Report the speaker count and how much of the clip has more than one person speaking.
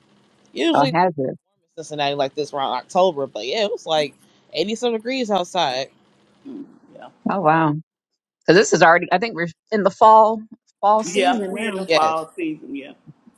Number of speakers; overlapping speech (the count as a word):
three, about 10%